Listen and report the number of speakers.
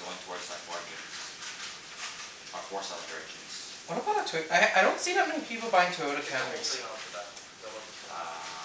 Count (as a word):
three